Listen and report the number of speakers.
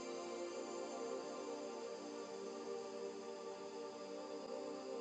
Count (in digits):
0